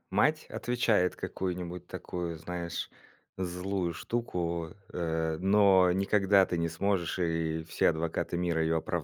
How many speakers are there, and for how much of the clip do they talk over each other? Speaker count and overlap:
1, no overlap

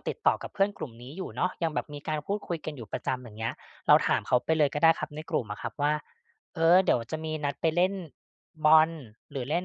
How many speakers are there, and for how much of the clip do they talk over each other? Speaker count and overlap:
1, no overlap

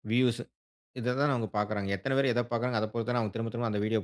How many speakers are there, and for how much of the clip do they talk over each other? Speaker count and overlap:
1, no overlap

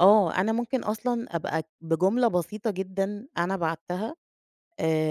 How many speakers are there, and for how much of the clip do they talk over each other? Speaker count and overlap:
1, no overlap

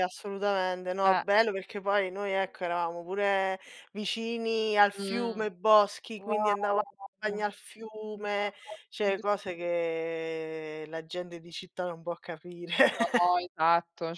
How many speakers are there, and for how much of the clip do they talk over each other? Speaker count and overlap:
2, about 9%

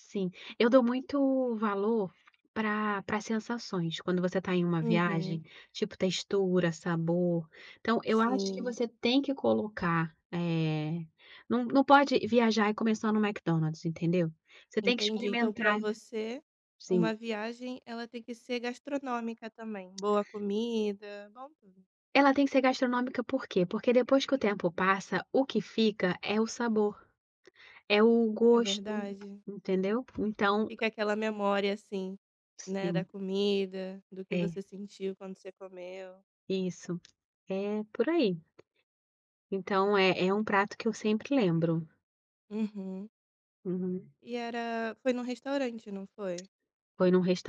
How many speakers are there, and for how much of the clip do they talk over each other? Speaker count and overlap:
2, about 7%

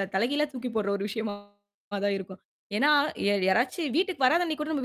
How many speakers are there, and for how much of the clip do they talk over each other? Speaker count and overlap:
1, no overlap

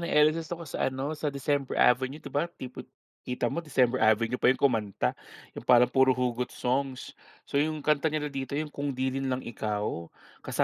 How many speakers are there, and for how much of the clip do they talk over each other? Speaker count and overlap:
1, no overlap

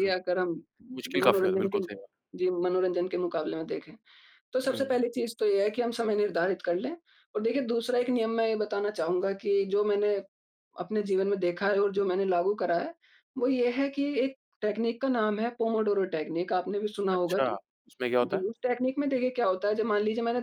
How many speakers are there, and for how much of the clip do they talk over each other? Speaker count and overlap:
2, about 9%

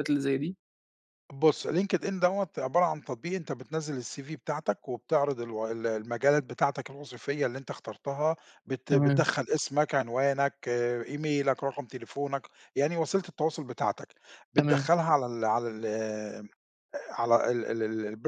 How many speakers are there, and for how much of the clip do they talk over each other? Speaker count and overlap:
2, about 3%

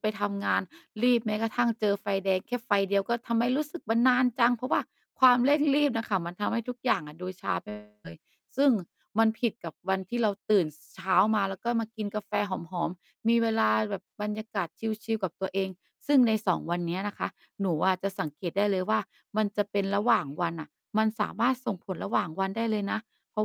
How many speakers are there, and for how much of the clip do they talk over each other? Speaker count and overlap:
1, no overlap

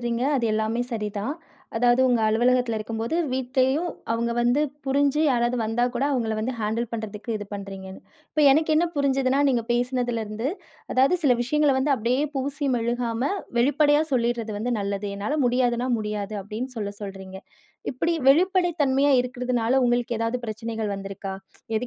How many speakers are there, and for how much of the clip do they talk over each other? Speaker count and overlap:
1, no overlap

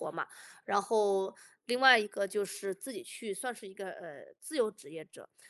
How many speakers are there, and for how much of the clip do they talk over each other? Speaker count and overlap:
1, no overlap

